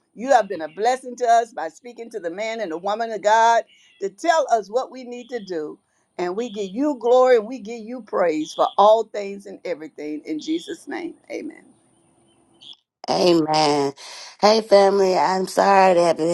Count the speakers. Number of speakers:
2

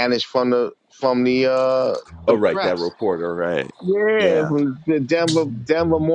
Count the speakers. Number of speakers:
2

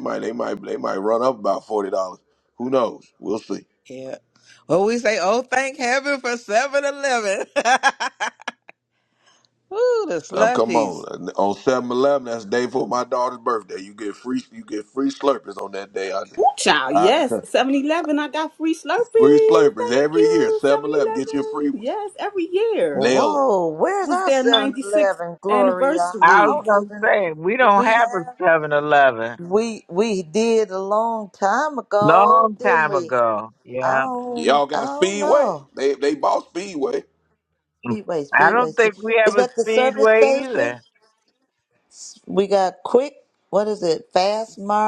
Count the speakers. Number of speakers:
5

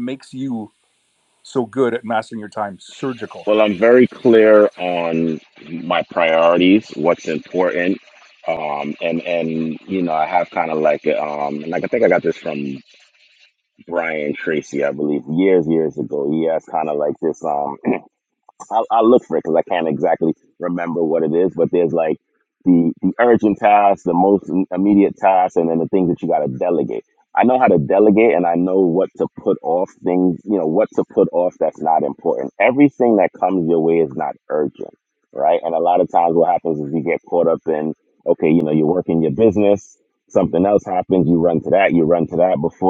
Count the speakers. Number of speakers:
2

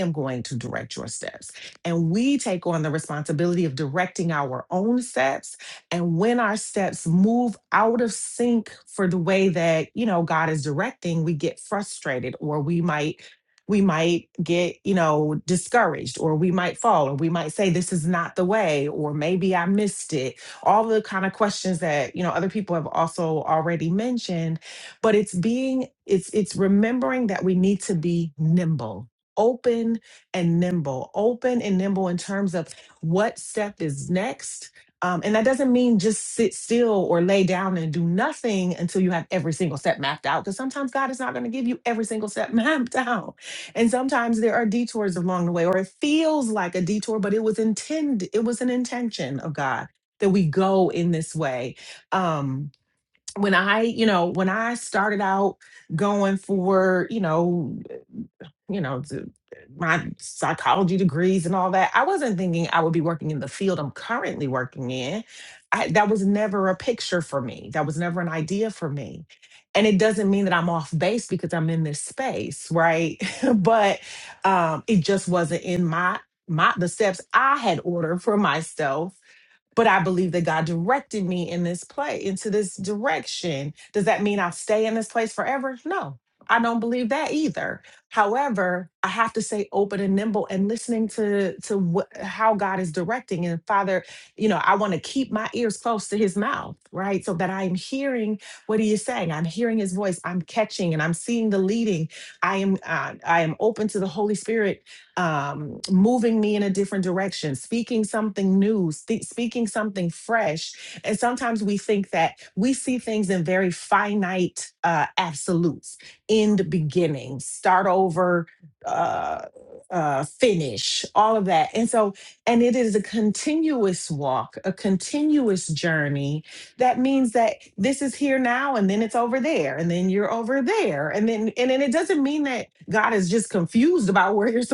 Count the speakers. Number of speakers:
1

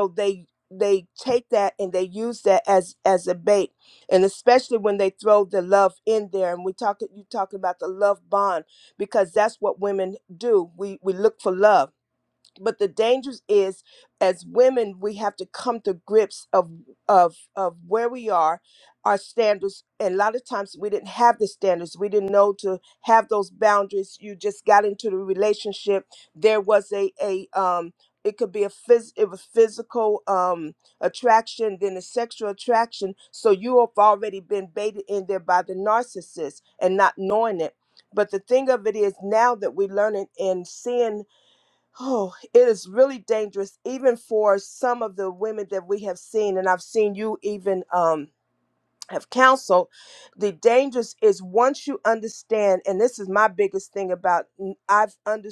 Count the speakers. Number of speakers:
1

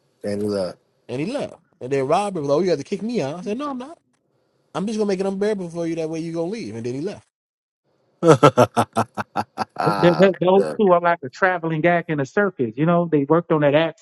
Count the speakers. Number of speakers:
3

